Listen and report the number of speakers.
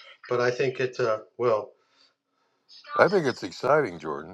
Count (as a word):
two